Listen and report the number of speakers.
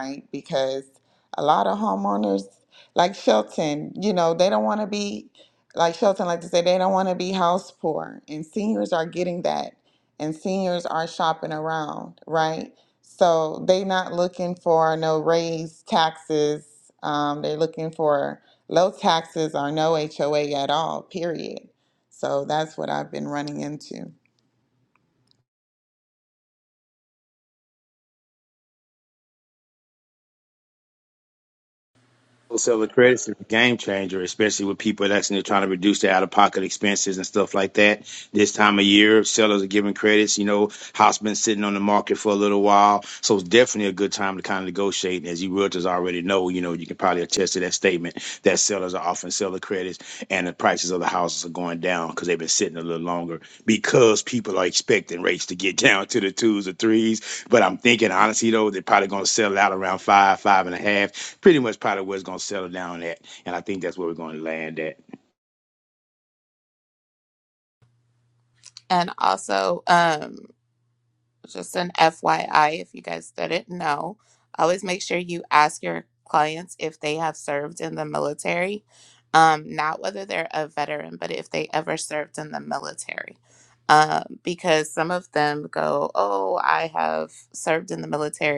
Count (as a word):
three